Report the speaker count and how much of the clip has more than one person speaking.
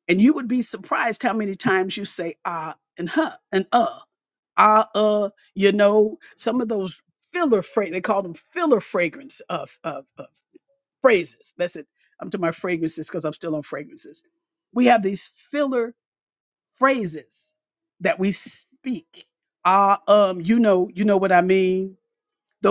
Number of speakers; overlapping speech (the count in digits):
1, no overlap